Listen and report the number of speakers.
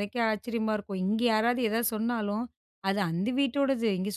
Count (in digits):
1